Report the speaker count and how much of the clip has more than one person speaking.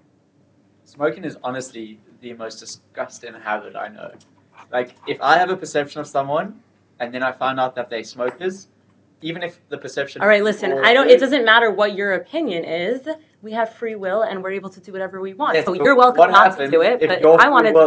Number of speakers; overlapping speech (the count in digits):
2, about 20%